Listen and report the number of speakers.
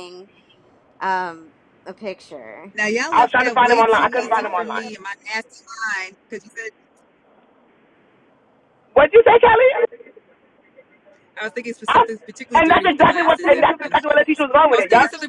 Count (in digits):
3